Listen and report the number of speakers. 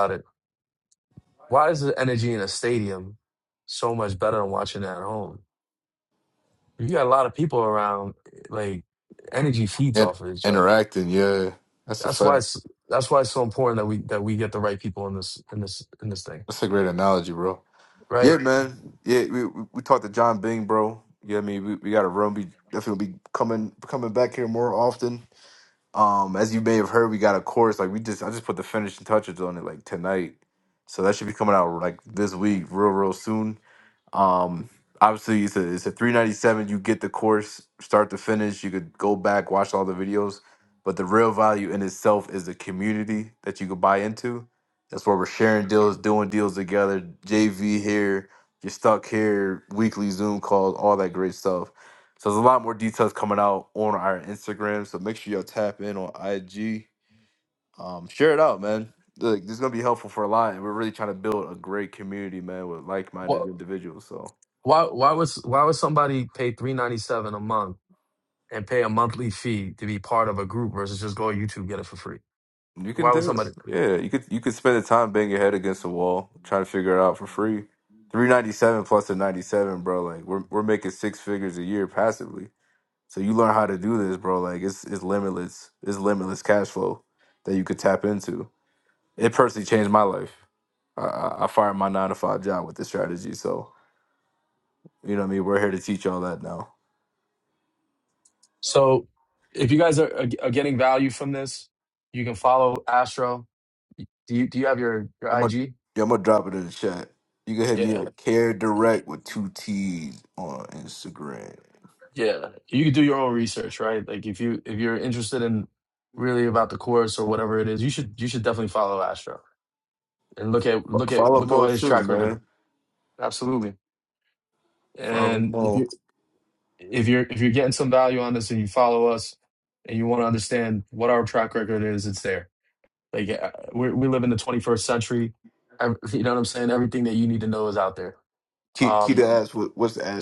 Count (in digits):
2